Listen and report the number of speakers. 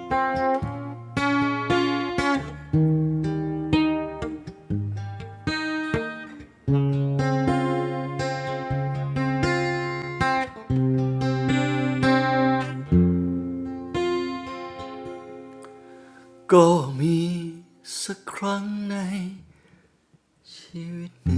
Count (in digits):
1